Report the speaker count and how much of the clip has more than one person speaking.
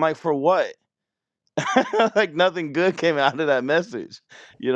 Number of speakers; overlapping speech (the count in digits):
1, no overlap